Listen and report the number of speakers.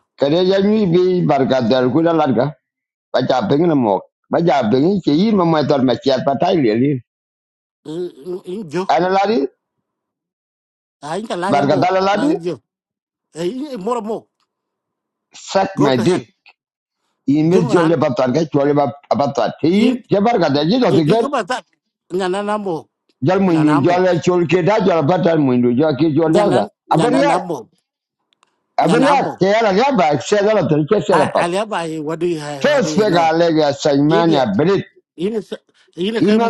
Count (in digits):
2